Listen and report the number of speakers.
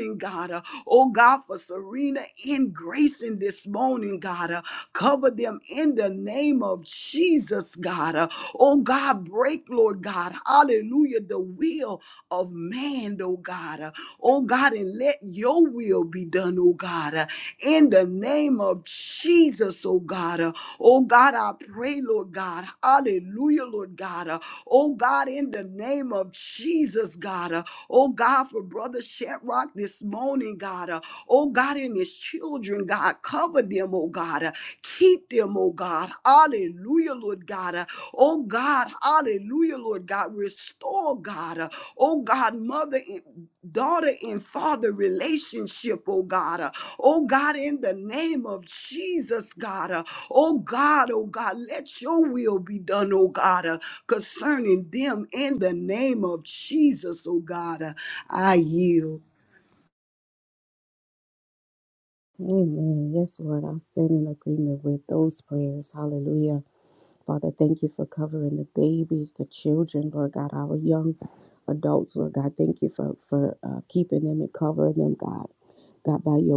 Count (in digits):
2